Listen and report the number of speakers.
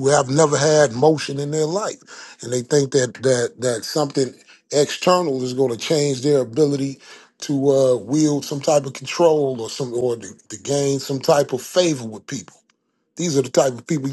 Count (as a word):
one